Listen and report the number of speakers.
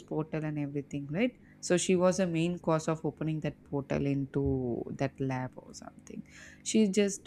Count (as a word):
one